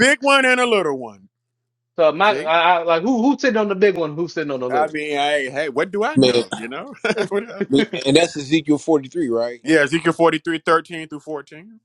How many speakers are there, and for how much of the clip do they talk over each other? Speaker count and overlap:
3, about 6%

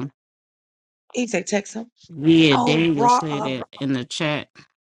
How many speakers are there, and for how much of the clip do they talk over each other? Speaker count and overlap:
2, about 24%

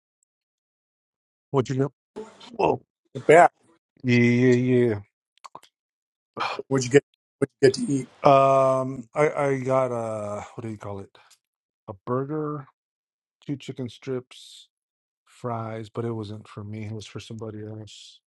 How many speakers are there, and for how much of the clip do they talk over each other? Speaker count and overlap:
2, no overlap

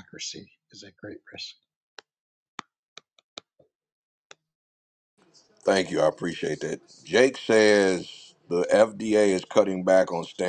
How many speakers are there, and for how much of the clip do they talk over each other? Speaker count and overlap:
2, no overlap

